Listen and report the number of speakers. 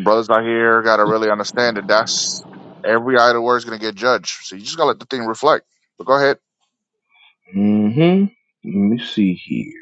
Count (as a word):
two